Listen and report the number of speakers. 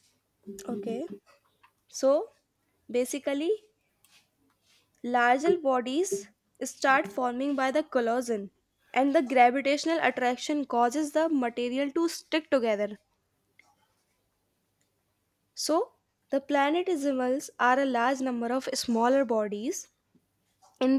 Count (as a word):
one